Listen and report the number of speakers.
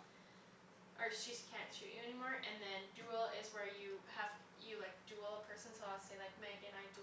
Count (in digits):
1